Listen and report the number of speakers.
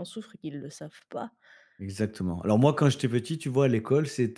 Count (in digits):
2